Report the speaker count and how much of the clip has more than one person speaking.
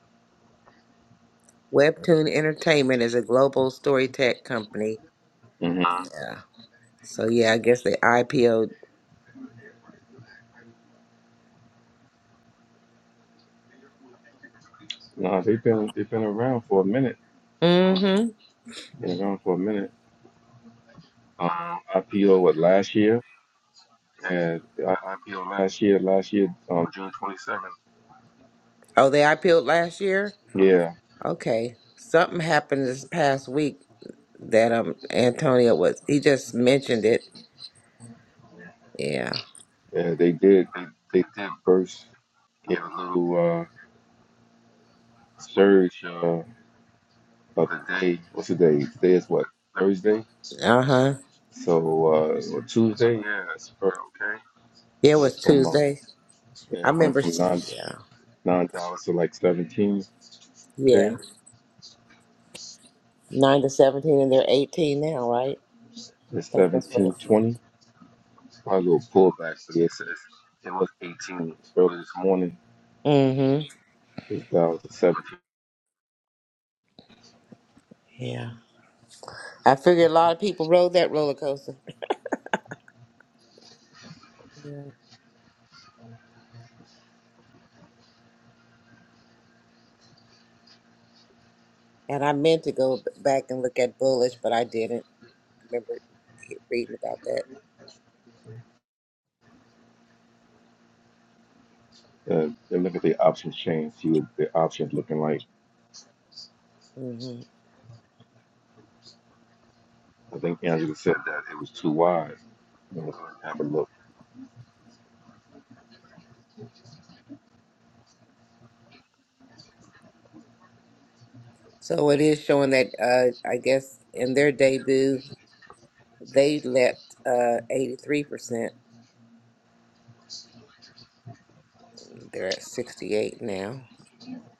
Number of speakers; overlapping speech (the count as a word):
two, about 2%